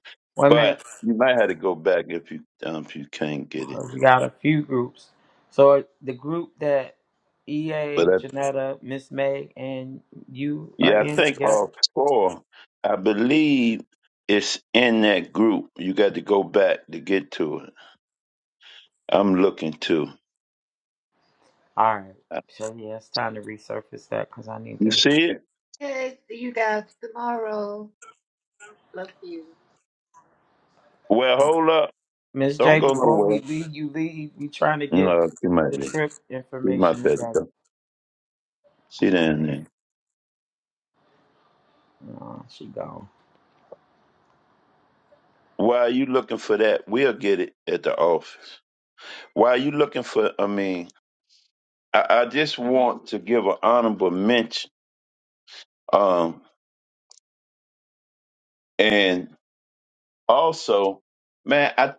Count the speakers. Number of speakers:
3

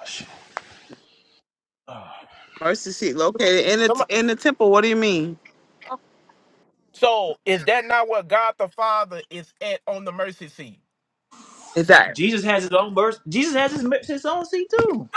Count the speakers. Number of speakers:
3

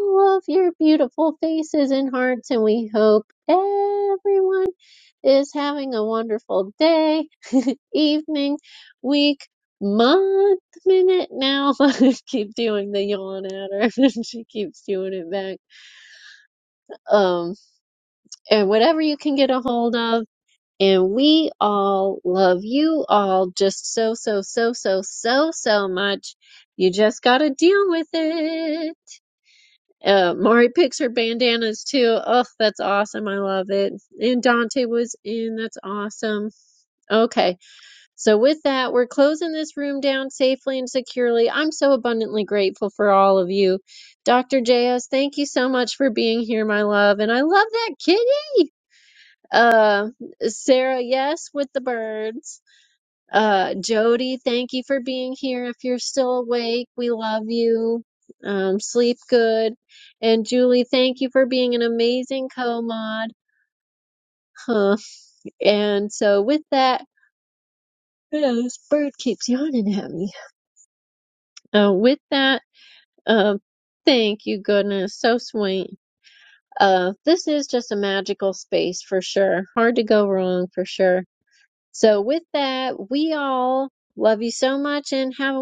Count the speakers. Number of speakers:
1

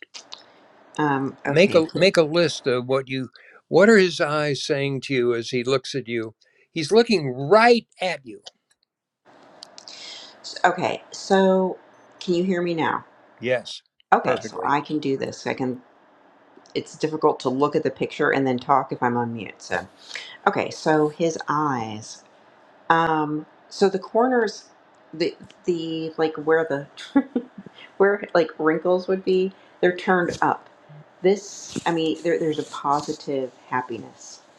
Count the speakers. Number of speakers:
2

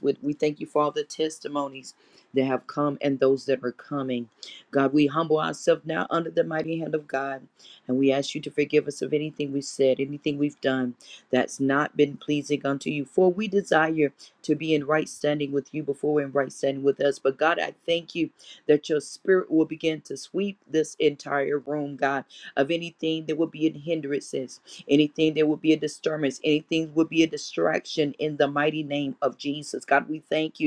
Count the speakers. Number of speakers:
1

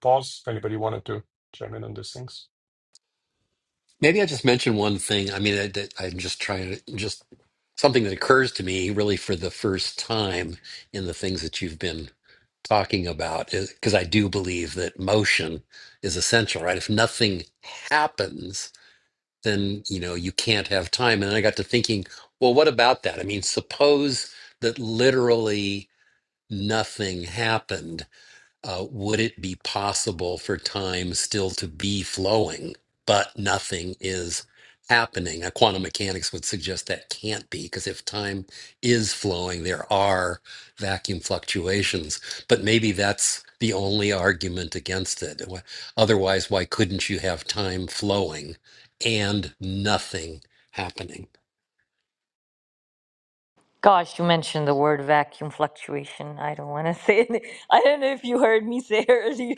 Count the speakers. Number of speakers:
3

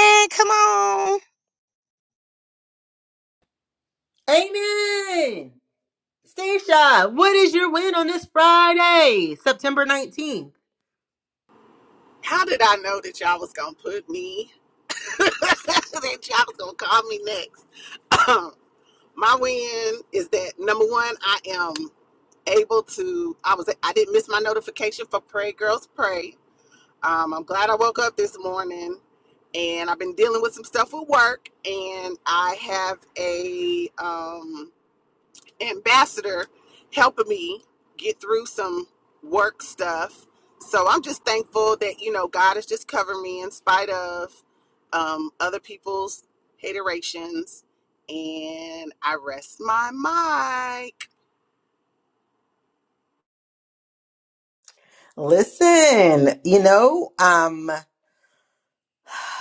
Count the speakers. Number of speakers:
3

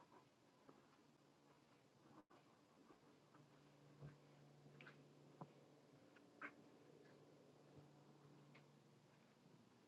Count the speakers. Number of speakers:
0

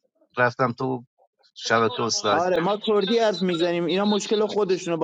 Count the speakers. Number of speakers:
2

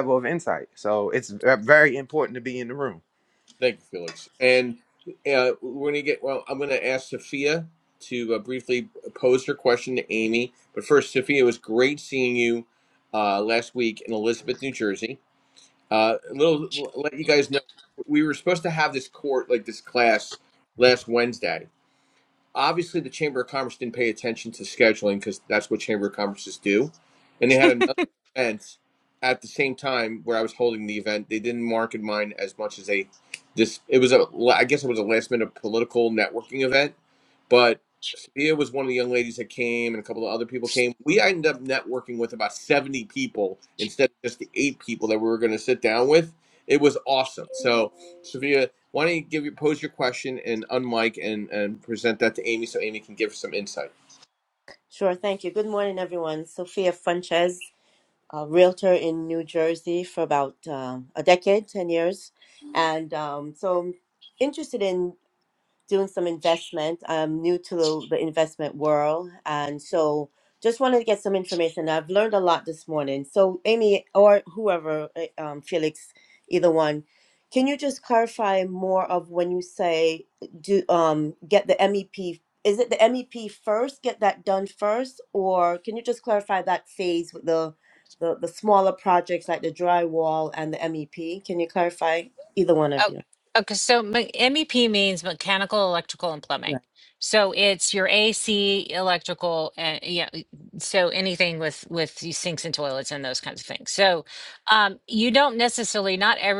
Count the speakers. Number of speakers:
4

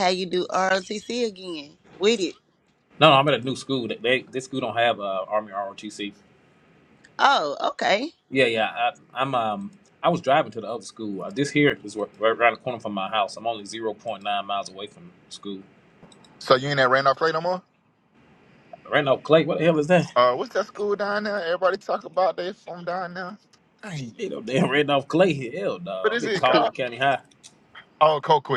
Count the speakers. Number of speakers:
3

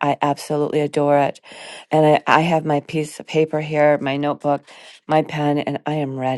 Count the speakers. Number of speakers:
1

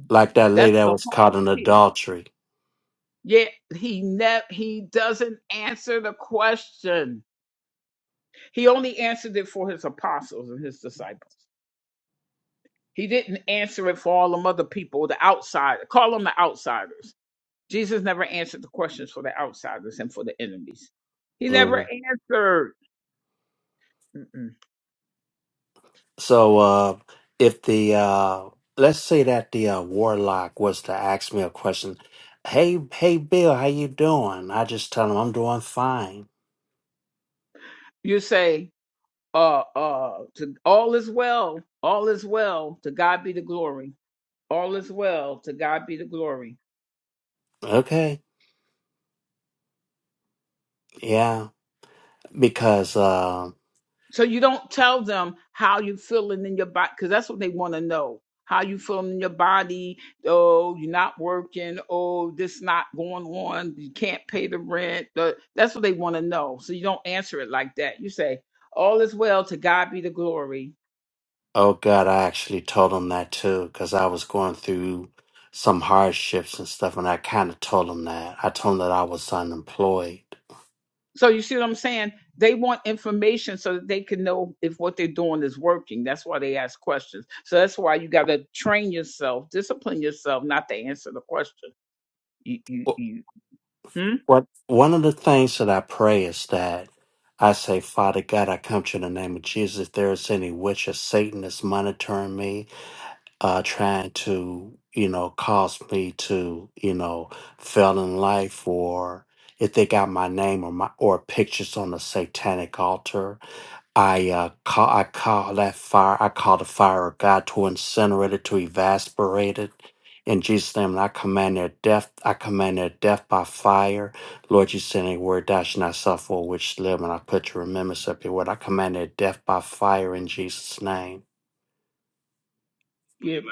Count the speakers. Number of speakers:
2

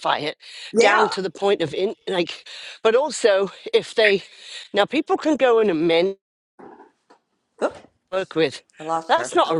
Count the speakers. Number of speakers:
2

